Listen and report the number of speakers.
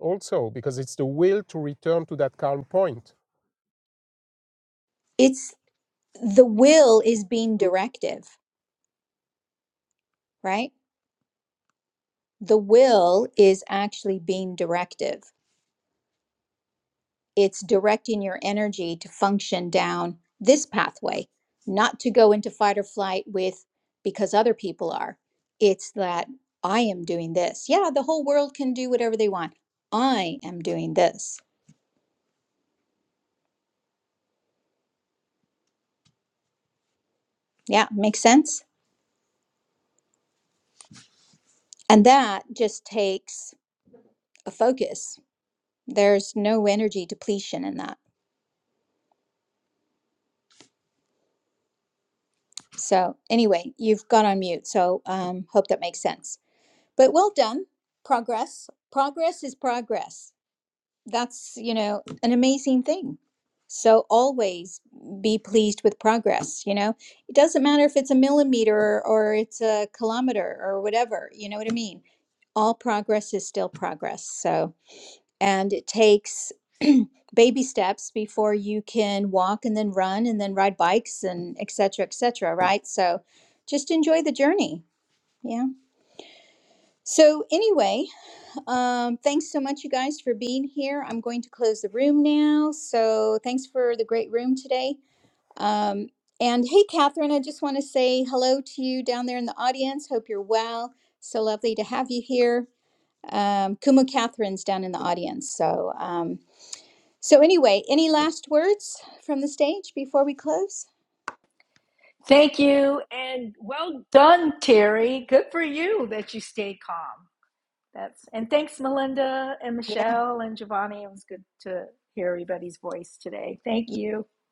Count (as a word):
three